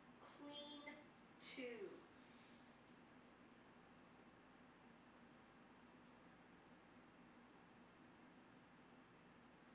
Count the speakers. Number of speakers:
1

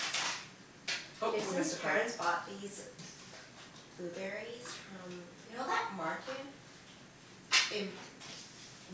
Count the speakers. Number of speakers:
1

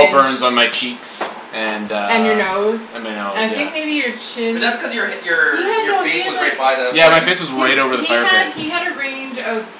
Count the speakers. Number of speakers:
3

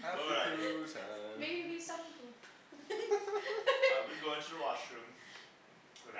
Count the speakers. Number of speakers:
3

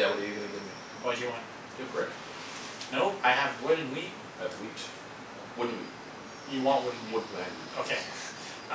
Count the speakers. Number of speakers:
2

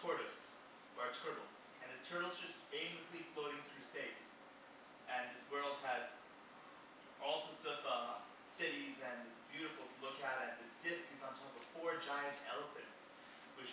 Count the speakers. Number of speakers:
1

